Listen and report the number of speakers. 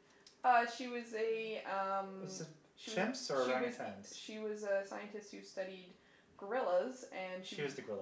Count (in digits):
2